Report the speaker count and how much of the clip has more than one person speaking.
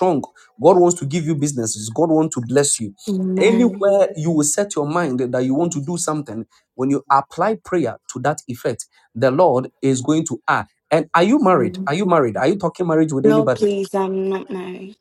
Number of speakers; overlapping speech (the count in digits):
2, about 8%